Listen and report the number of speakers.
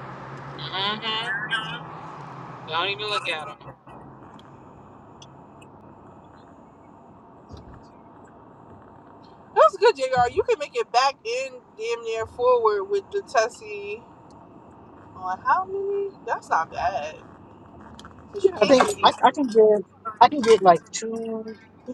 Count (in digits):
3